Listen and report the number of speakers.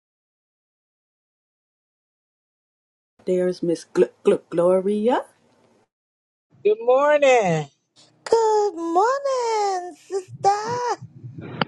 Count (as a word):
three